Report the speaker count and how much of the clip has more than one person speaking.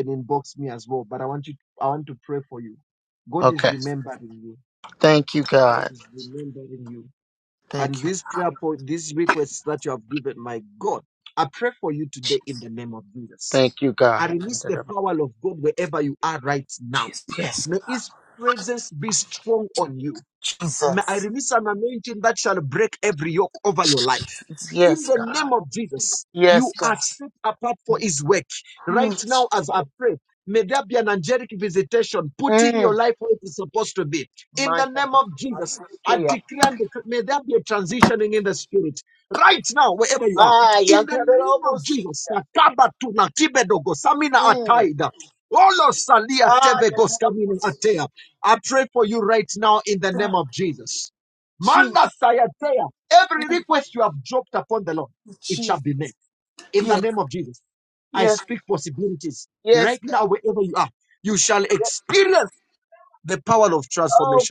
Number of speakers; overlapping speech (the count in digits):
2, about 15%